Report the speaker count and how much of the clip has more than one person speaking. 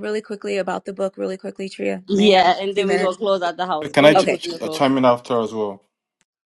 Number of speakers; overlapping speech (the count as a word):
three, about 32%